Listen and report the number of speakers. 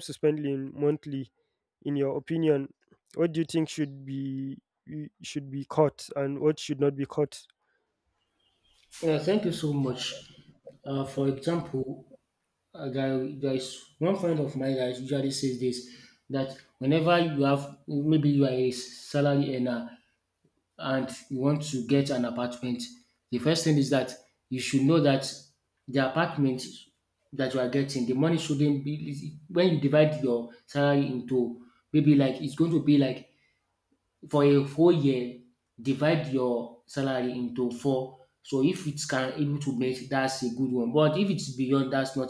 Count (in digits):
2